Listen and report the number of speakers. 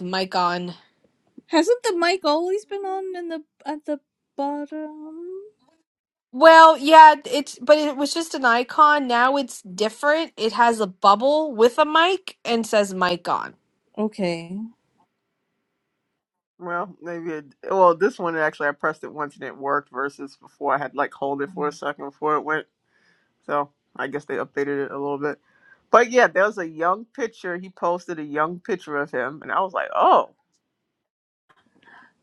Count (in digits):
3